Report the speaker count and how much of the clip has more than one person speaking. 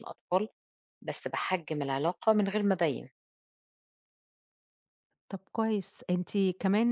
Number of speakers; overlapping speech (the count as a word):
two, no overlap